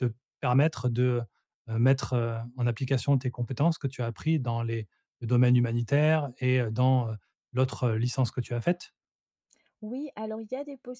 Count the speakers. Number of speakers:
two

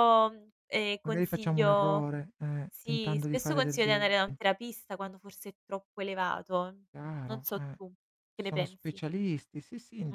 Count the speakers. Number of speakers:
two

